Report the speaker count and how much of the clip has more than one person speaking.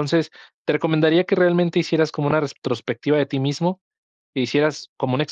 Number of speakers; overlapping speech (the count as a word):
one, no overlap